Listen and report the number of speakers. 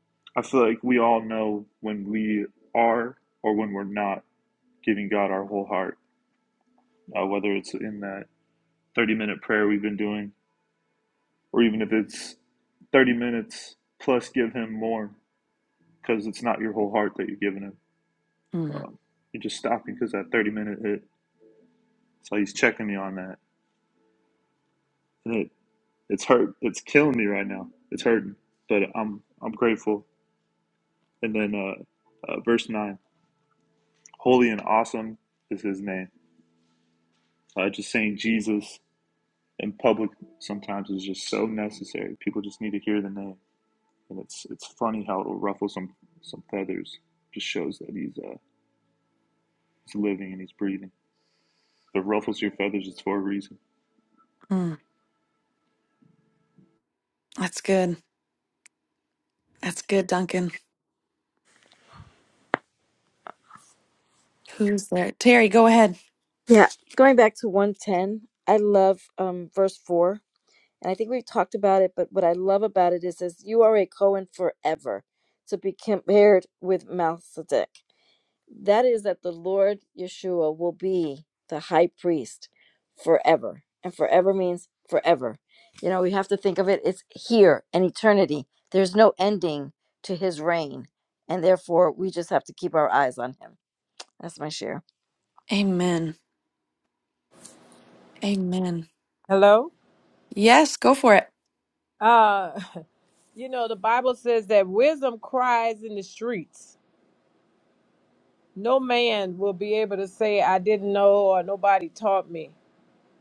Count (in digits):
4